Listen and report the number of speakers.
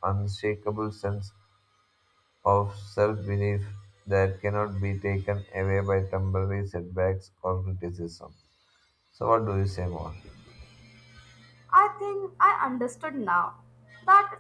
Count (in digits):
2